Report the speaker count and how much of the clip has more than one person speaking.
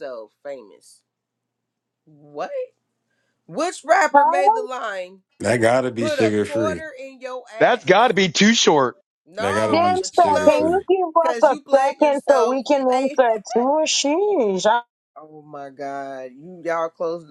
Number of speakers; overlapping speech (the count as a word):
four, about 25%